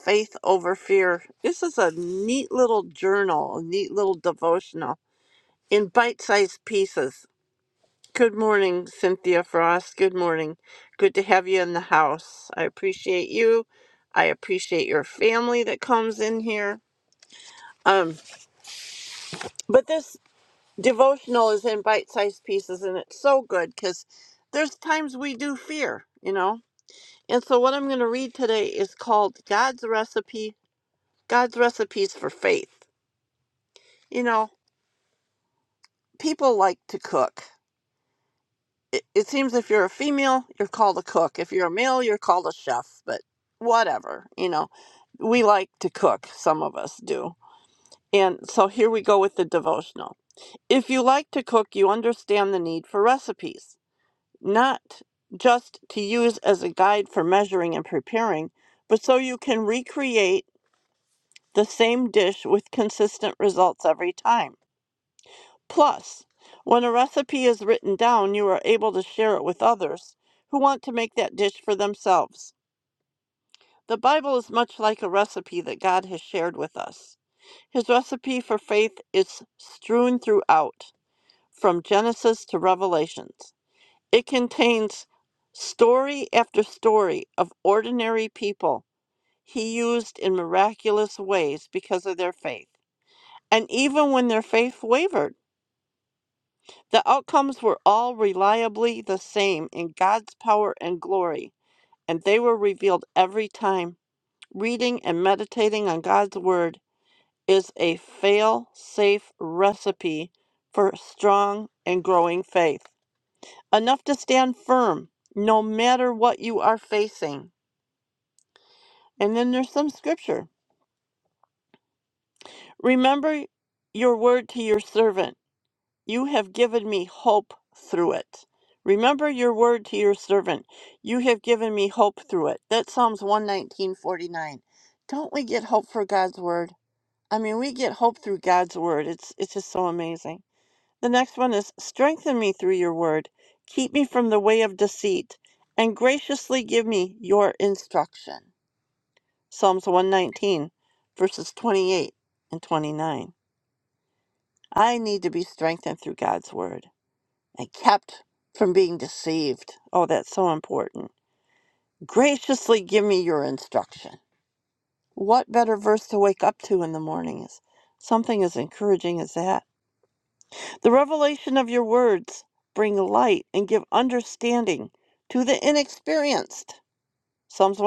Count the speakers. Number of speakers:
one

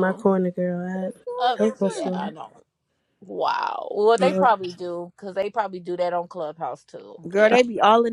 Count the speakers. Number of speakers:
three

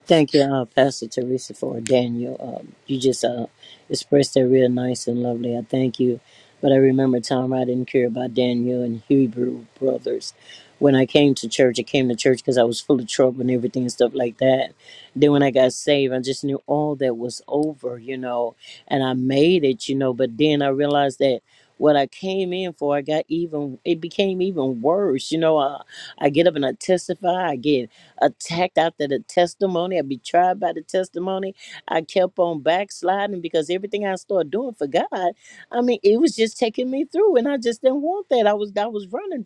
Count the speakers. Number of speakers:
one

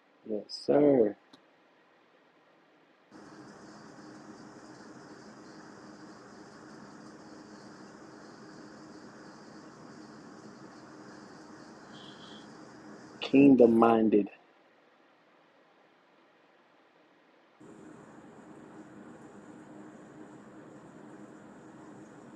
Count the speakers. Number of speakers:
one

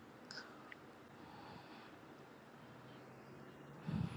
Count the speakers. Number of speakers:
zero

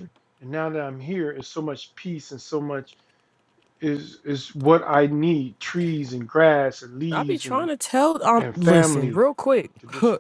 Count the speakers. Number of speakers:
two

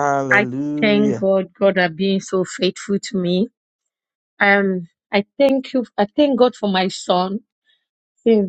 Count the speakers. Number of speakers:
two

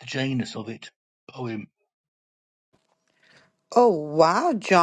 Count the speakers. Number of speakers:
two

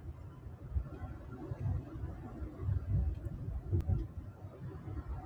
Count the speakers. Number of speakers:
zero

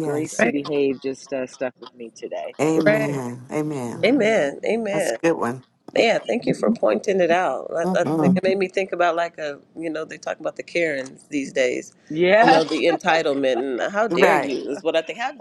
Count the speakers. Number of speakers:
three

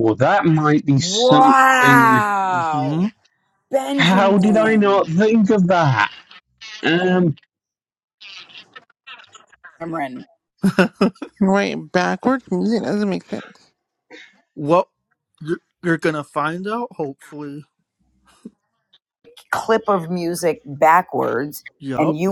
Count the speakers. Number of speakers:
four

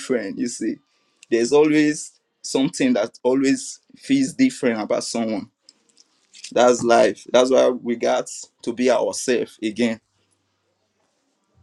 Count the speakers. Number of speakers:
one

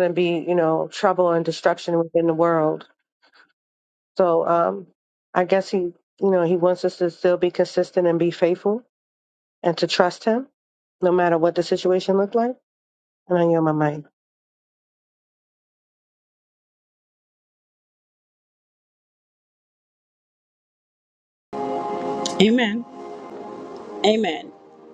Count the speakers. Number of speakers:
two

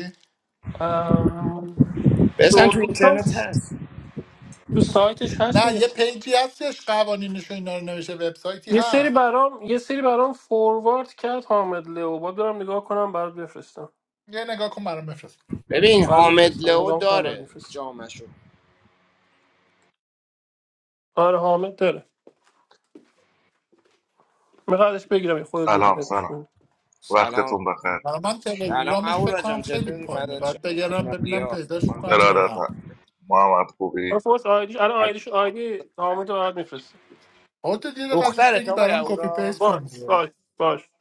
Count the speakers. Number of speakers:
four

